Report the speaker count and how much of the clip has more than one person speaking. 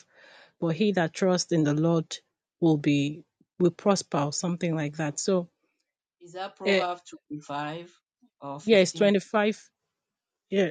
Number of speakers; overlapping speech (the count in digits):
2, about 6%